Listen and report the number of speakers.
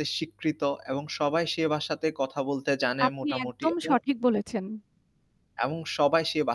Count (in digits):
2